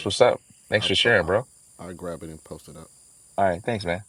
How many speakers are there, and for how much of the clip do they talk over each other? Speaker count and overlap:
two, about 15%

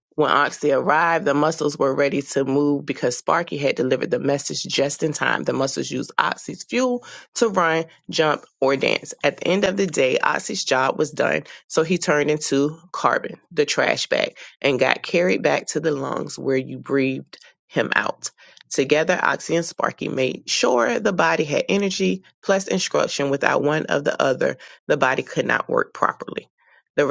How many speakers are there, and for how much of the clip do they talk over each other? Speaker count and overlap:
one, no overlap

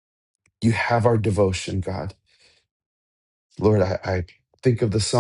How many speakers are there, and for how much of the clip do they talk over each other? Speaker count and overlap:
one, no overlap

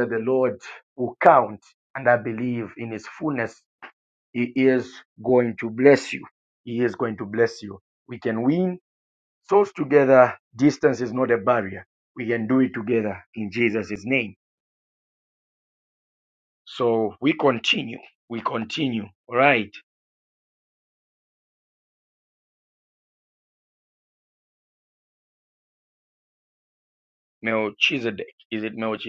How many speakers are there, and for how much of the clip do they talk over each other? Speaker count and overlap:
one, no overlap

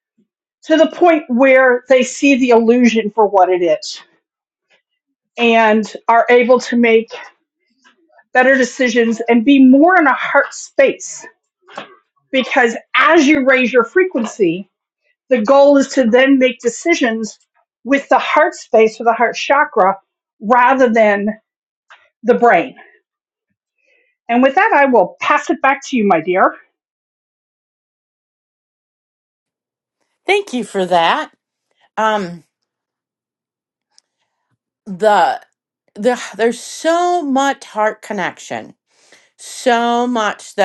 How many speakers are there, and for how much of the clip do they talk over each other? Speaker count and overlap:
two, no overlap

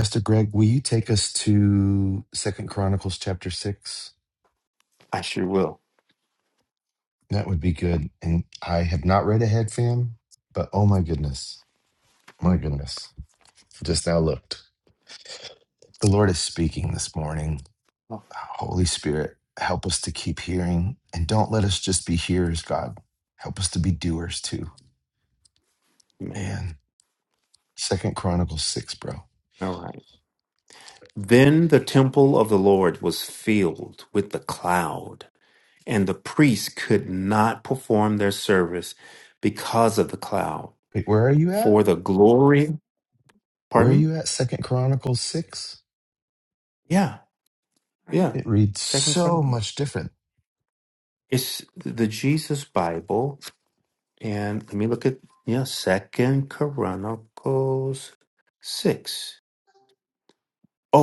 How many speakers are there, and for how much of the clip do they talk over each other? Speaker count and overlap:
two, about 2%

